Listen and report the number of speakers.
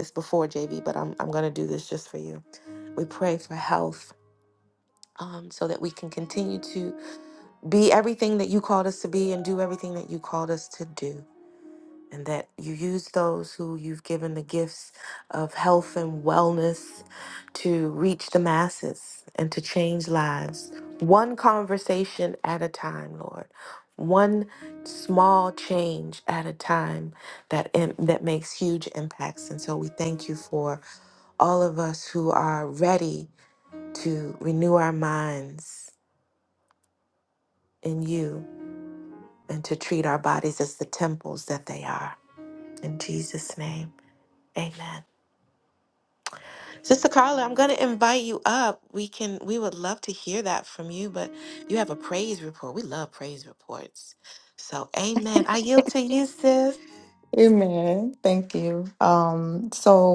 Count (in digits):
2